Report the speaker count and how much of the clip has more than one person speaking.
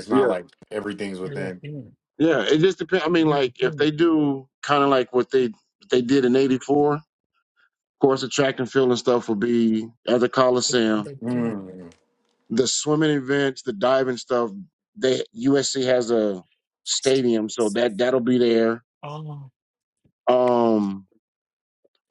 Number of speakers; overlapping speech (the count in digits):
3, about 8%